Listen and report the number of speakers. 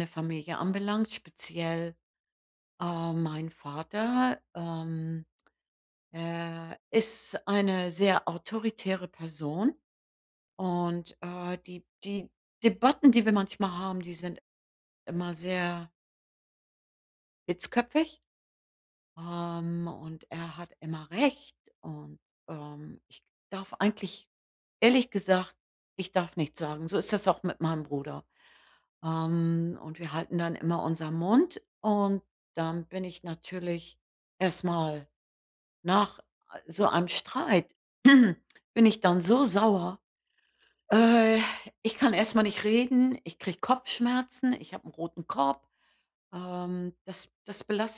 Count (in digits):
1